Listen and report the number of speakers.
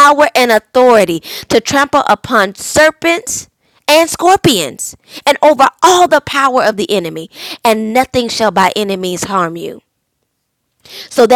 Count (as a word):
one